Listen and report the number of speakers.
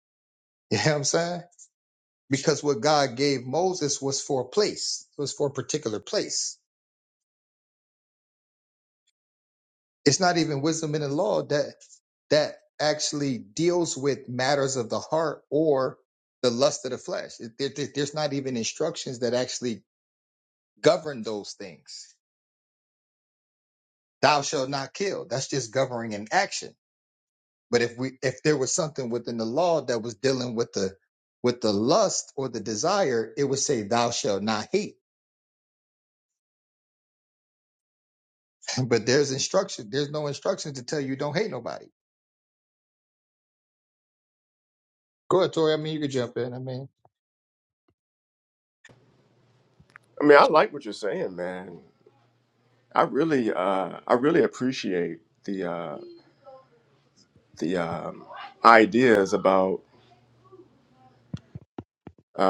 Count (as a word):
two